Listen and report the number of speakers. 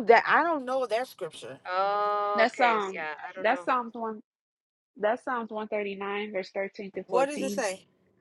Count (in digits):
3